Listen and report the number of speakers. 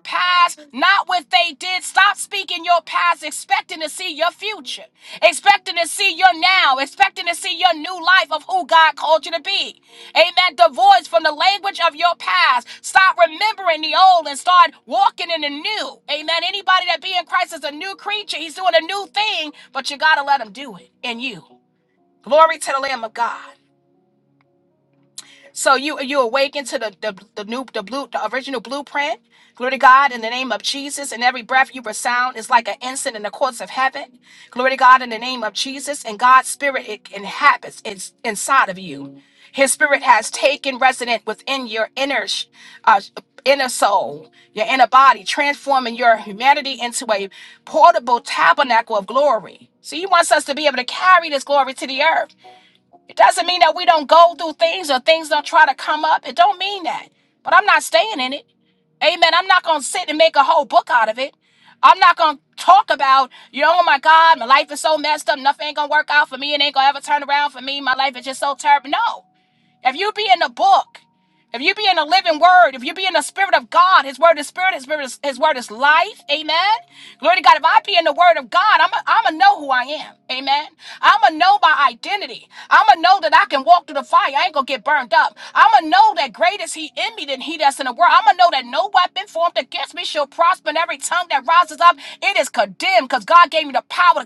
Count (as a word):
one